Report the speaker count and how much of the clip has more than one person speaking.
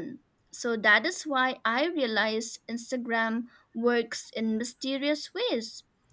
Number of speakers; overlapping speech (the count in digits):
1, no overlap